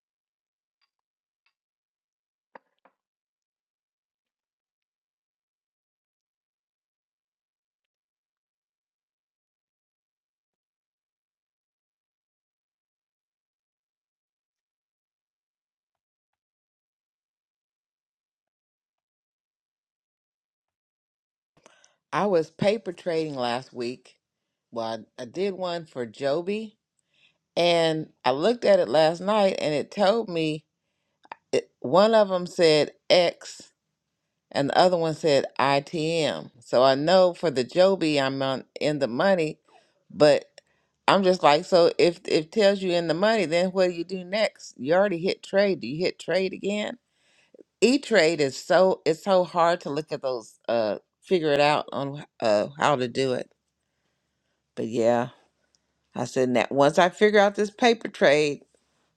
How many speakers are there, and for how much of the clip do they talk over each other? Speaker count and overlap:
1, no overlap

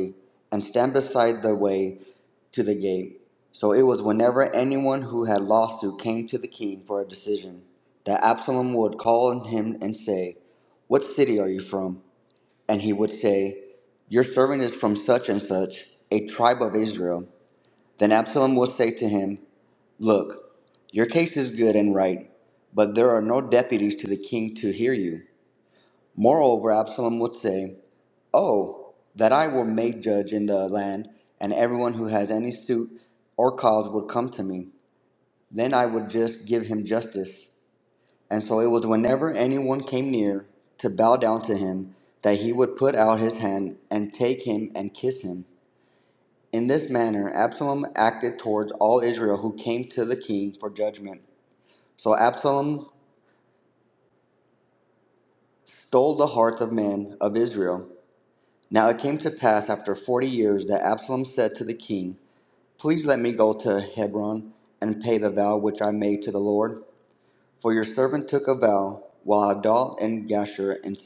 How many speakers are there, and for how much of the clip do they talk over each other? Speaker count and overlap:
1, no overlap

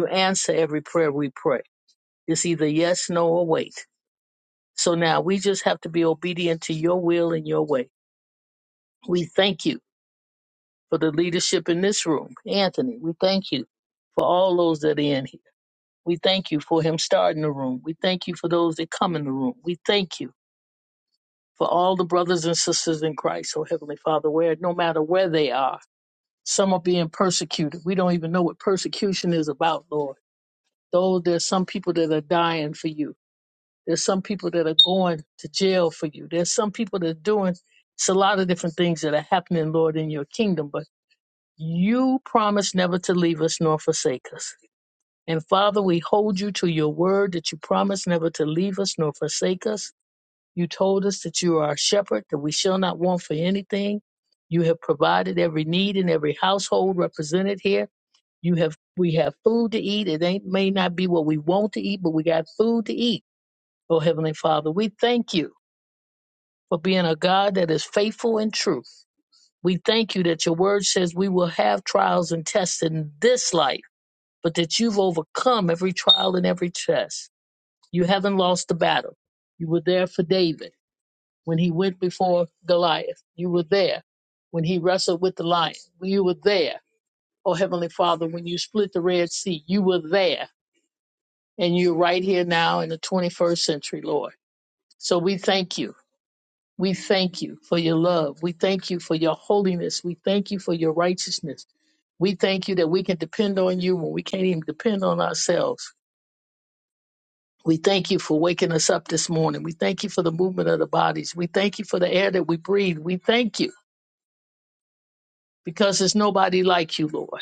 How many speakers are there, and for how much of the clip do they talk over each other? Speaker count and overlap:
1, no overlap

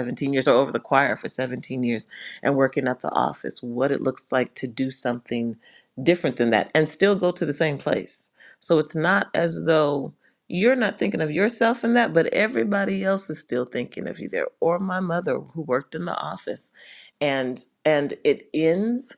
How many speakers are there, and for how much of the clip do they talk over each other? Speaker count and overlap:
1, no overlap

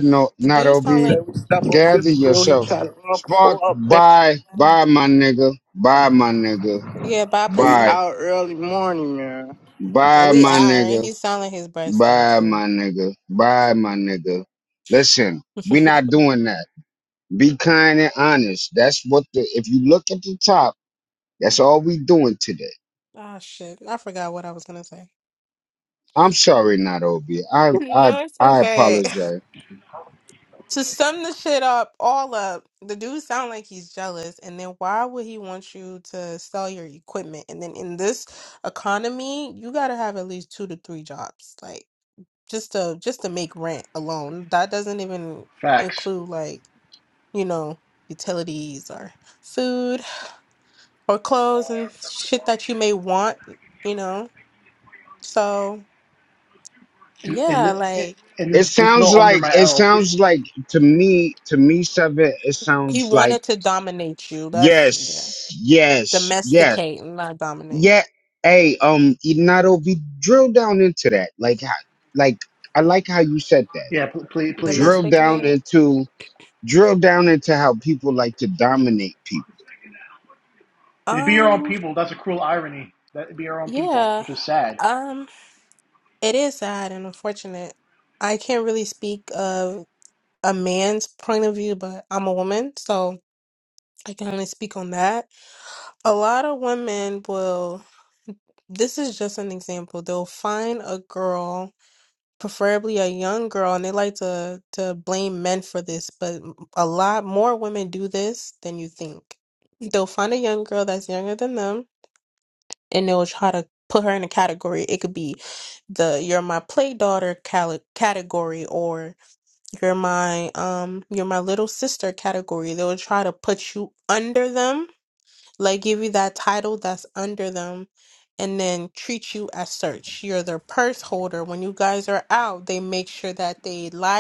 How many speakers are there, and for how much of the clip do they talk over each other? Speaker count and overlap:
4, about 10%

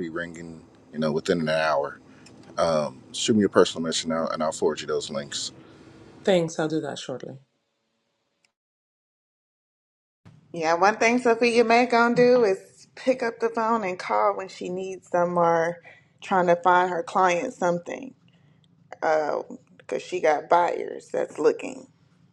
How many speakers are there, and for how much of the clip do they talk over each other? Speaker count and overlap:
3, no overlap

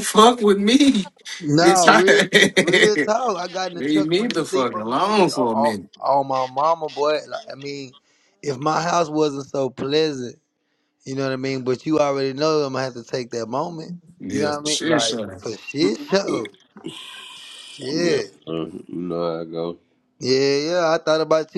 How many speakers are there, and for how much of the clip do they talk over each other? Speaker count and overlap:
3, about 23%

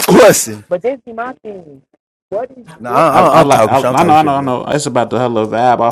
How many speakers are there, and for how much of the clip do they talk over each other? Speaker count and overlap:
3, about 27%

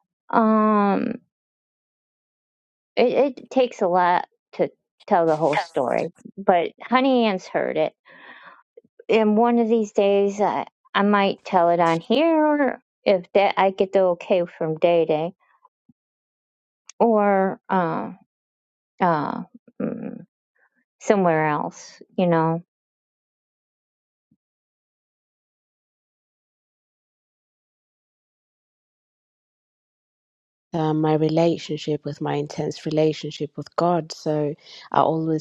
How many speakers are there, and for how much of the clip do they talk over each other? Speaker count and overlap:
2, no overlap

